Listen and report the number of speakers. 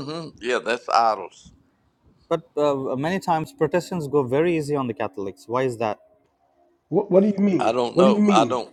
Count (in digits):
3